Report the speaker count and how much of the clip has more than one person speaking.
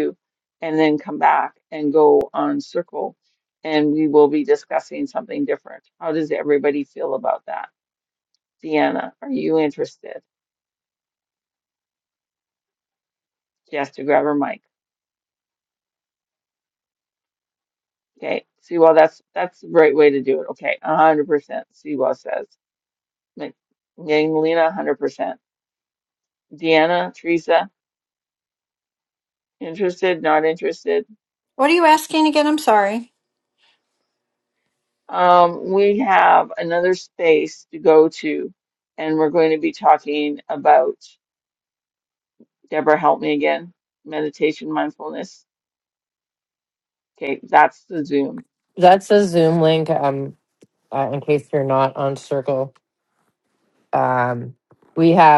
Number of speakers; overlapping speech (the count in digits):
3, no overlap